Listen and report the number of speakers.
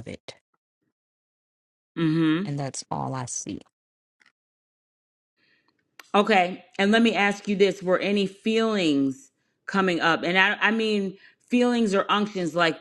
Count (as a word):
two